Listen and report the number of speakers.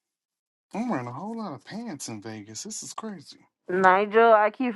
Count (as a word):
two